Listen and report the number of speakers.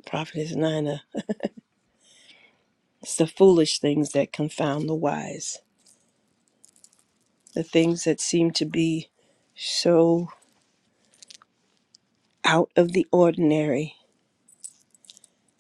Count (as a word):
one